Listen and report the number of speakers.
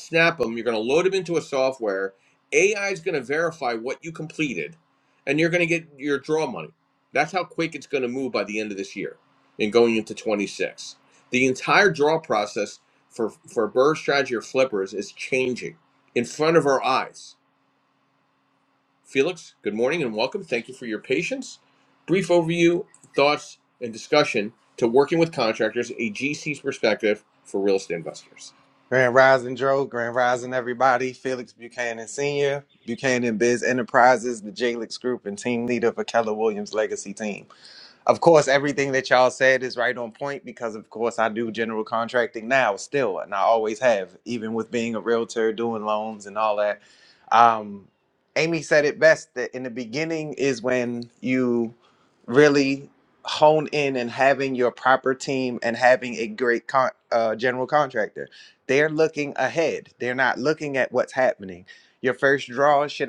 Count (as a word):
two